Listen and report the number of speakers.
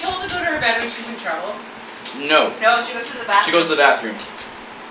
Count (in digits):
3